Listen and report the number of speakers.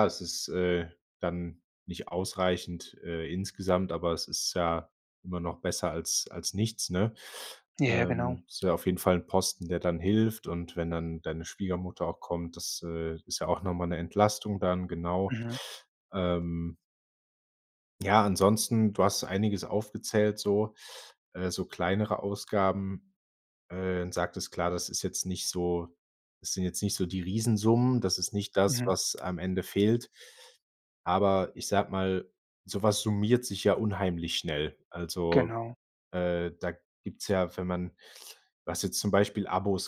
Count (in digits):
2